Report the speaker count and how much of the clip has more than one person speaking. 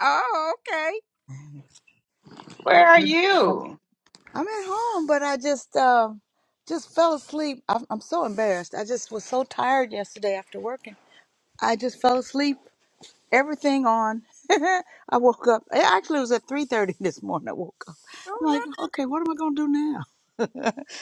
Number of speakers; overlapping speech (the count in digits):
3, about 1%